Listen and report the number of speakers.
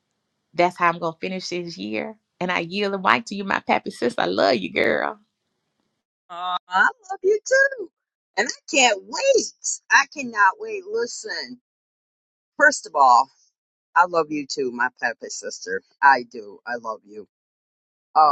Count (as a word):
two